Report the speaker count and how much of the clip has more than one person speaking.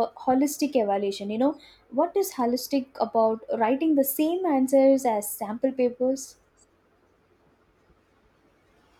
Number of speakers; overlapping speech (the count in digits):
1, no overlap